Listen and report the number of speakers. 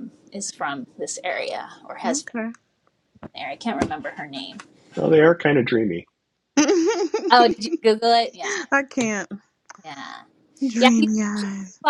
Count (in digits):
3